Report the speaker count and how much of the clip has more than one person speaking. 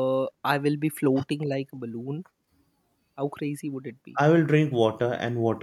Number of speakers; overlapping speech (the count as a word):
two, no overlap